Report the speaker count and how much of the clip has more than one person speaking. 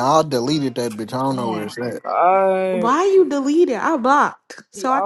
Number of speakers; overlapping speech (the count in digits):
3, about 24%